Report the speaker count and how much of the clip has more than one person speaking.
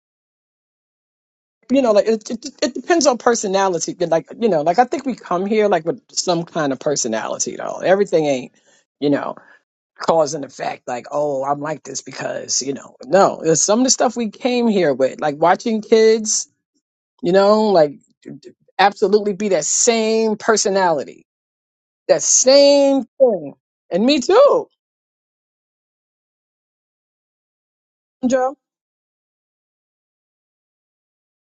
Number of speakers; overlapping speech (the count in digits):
1, no overlap